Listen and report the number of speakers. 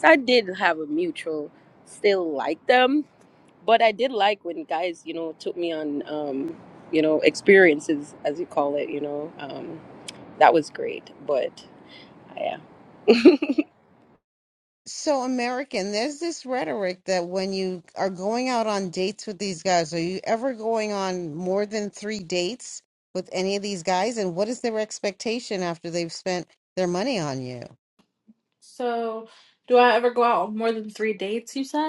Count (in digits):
3